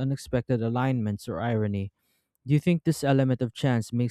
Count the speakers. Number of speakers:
1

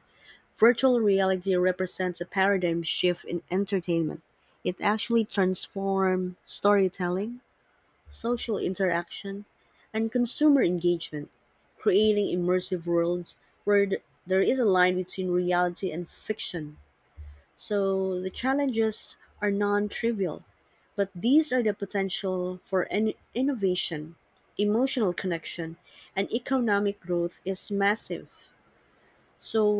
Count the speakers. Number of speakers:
1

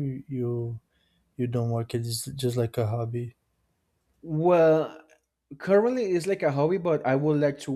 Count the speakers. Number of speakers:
2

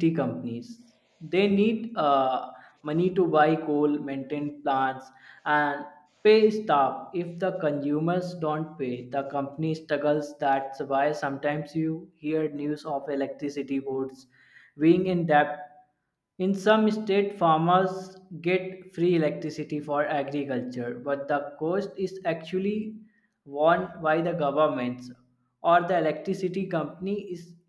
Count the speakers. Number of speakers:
1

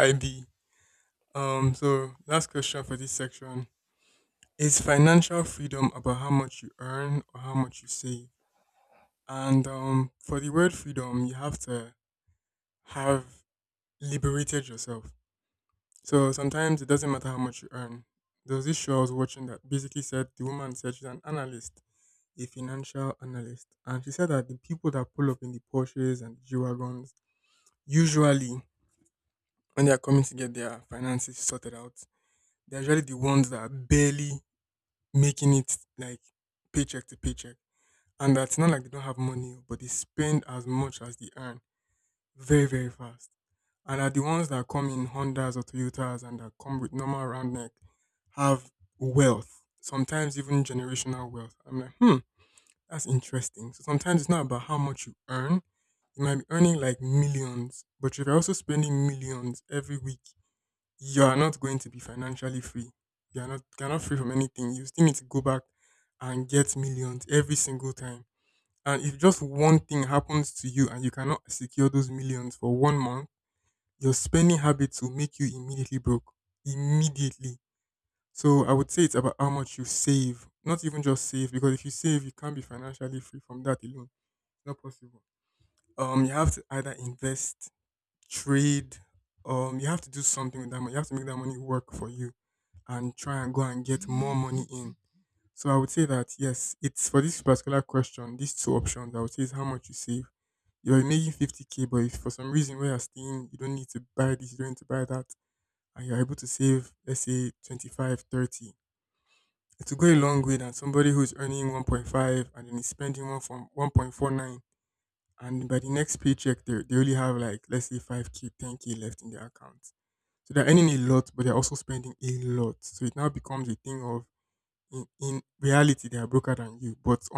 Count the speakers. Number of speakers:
1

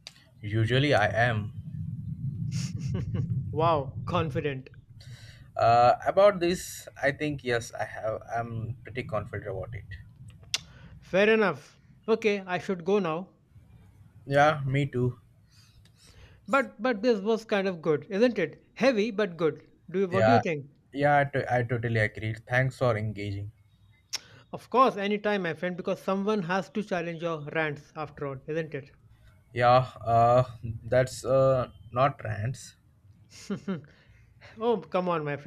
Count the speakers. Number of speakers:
2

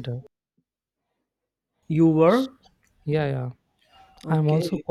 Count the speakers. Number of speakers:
2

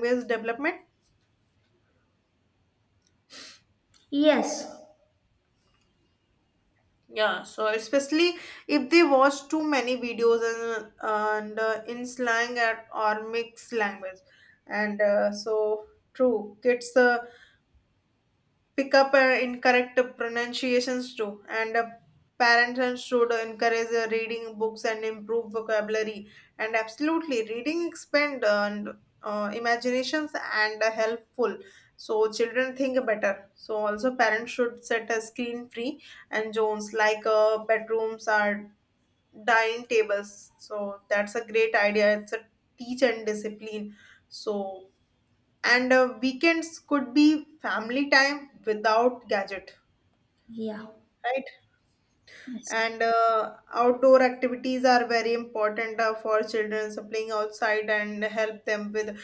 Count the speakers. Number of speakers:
2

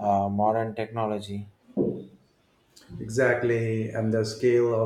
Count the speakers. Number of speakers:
2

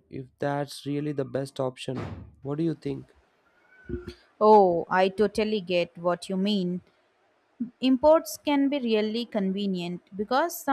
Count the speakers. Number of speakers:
2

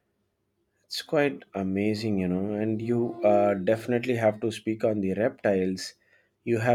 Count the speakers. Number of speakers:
1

